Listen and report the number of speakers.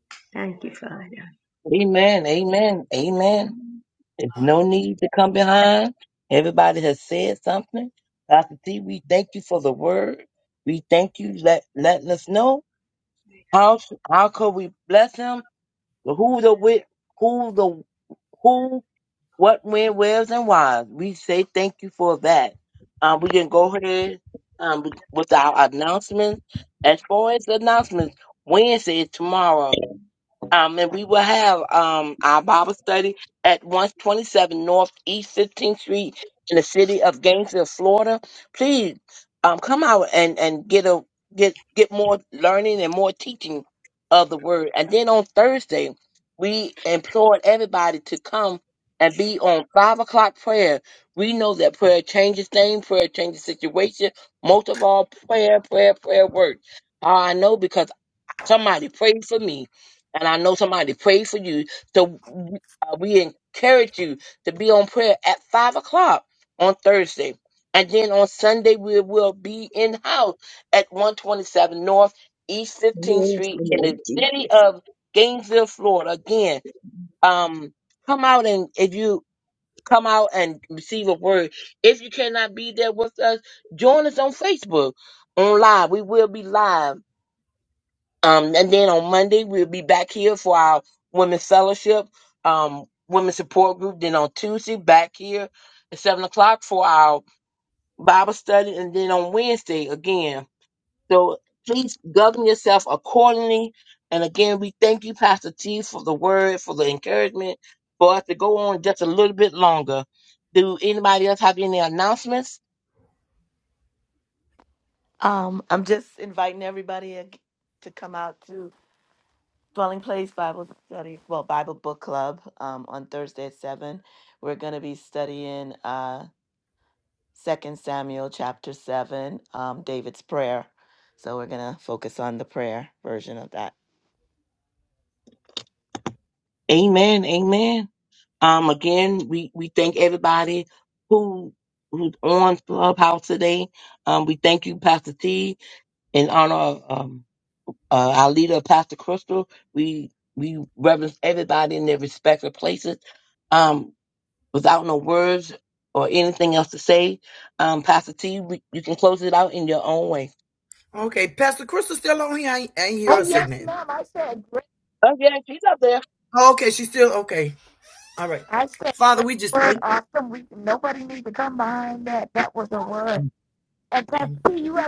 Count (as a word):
five